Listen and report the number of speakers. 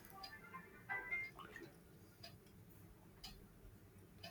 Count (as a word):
zero